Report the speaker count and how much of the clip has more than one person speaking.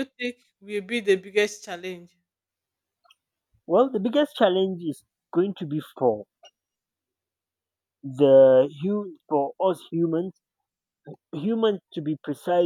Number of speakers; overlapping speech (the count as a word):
two, no overlap